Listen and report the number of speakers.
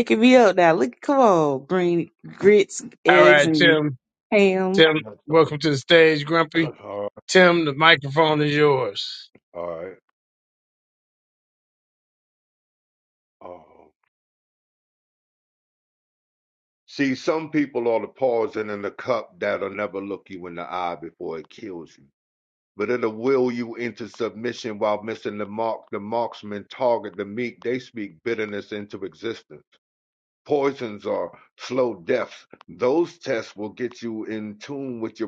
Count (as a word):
three